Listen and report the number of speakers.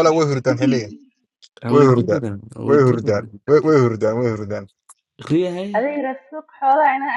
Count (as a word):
three